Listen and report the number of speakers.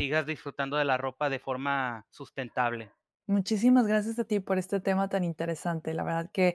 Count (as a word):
two